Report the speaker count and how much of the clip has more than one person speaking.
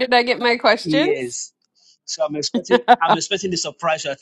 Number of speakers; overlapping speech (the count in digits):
2, about 8%